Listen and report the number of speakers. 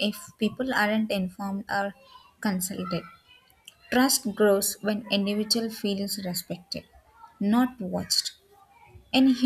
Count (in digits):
1